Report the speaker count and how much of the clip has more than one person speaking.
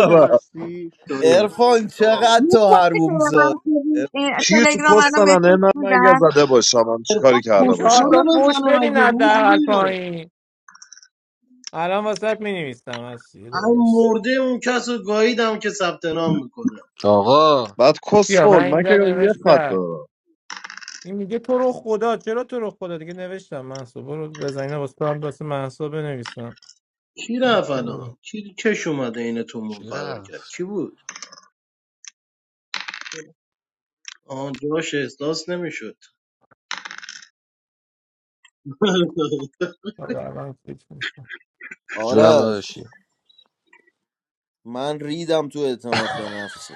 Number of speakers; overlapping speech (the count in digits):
7, about 21%